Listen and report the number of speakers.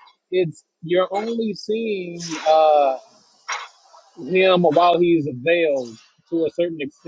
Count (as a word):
one